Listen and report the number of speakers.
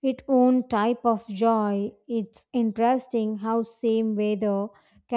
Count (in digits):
1